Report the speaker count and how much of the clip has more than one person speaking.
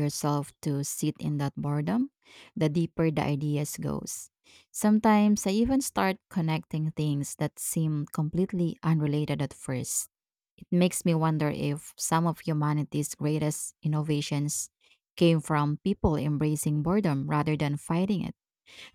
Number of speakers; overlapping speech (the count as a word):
one, no overlap